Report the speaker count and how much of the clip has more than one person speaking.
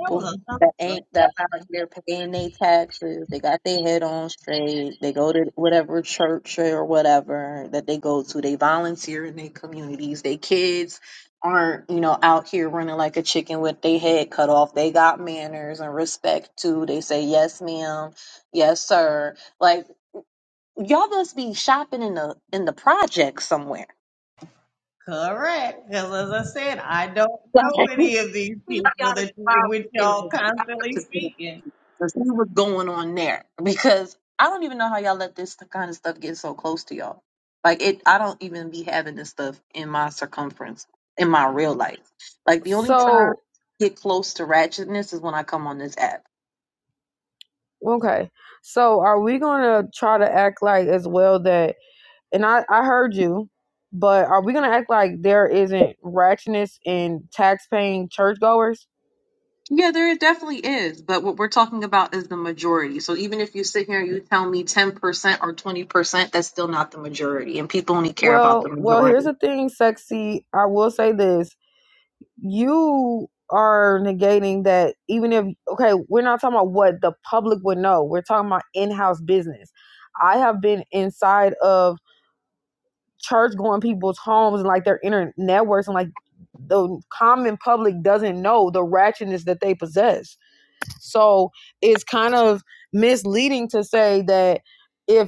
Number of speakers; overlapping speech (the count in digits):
3, about 5%